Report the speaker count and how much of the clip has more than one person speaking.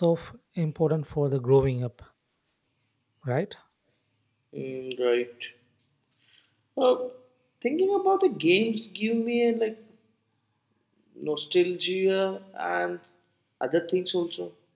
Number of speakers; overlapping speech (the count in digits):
2, no overlap